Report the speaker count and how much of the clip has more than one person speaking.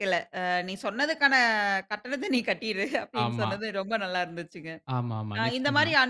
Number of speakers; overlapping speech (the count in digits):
2, about 16%